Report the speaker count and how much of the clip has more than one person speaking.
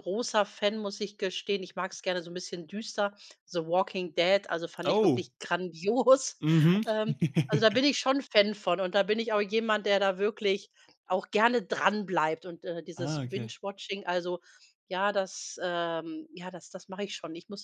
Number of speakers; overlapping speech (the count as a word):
two, about 5%